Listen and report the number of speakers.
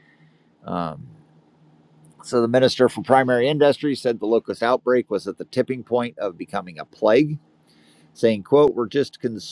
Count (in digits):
1